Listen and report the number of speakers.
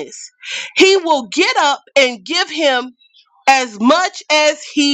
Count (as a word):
one